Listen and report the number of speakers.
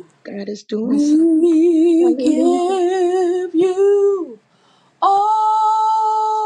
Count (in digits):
2